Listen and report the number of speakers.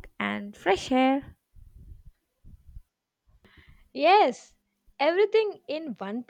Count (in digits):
2